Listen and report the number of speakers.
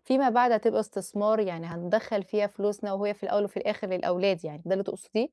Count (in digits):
1